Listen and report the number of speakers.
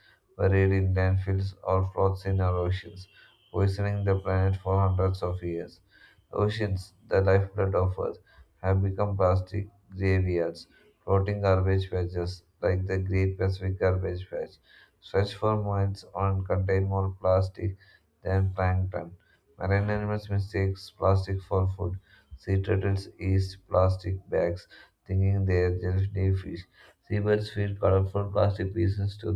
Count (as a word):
one